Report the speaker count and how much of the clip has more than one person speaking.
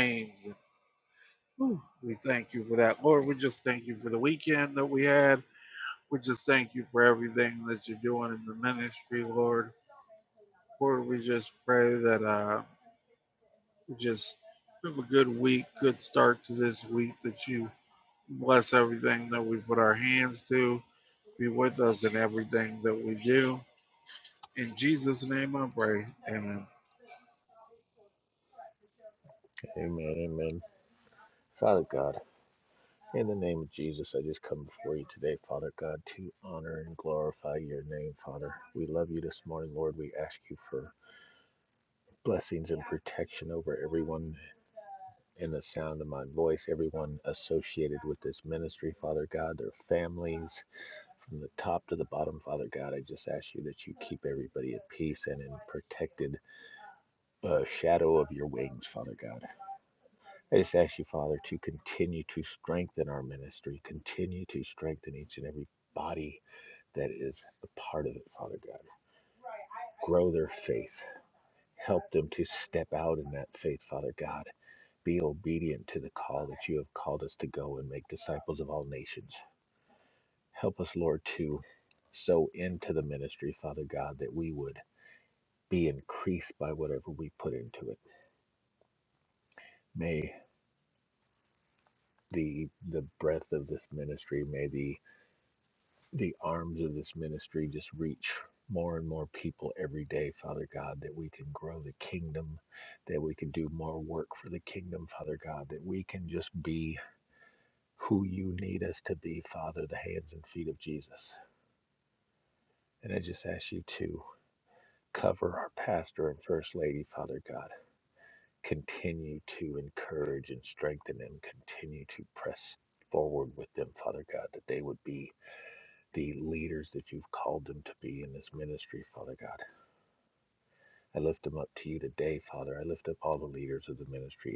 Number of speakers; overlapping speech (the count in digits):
2, no overlap